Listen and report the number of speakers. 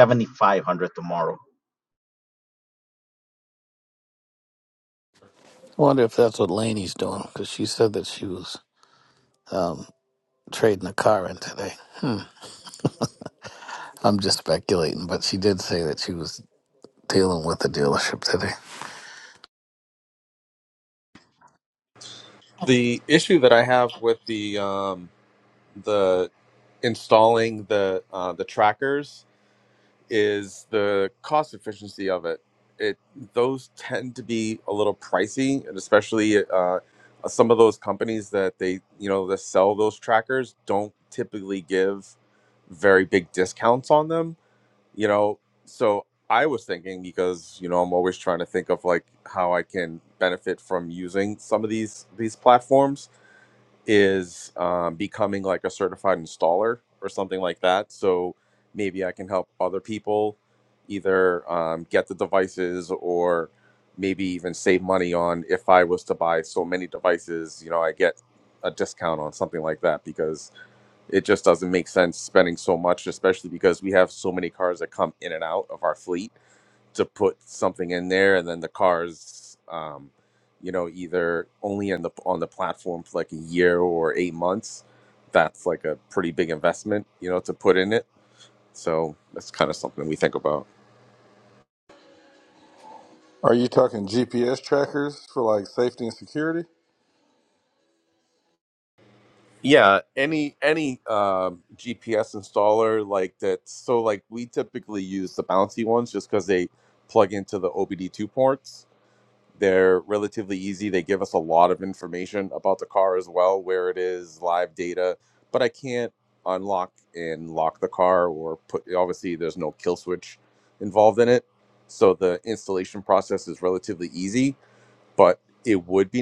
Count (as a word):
four